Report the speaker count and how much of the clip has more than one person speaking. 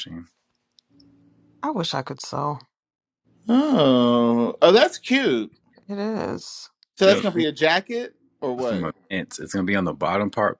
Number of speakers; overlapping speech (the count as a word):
three, about 5%